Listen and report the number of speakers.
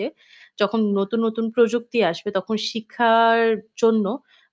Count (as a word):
one